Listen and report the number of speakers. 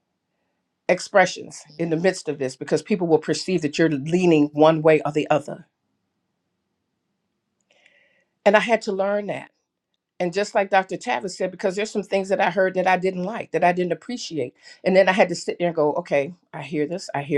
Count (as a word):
one